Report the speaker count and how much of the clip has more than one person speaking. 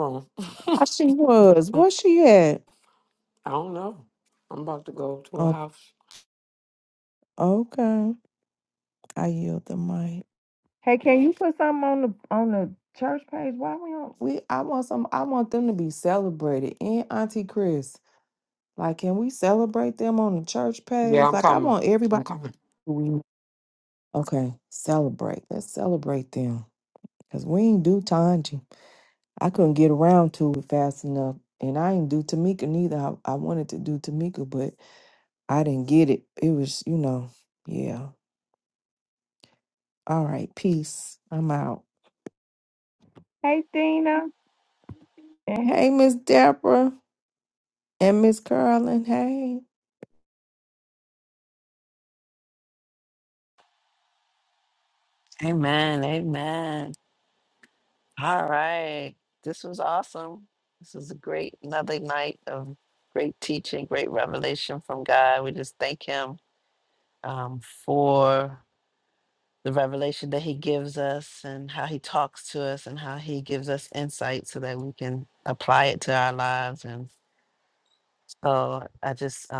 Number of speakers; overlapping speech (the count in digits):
3, about 1%